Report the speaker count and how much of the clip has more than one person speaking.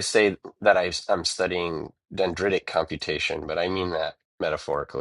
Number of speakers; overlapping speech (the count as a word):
one, no overlap